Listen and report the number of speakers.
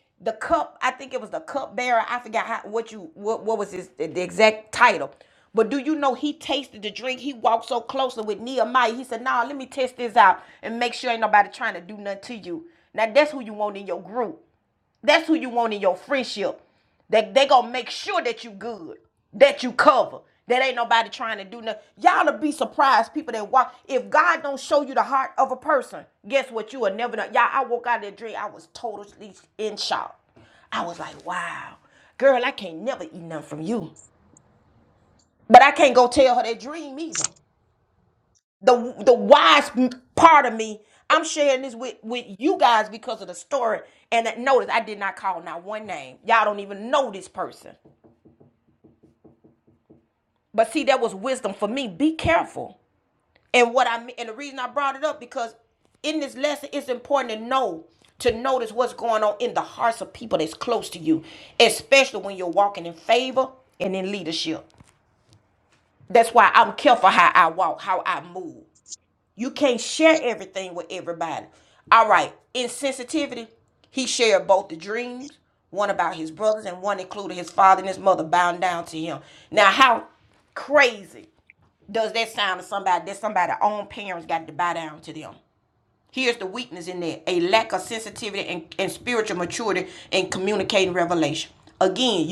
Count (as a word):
one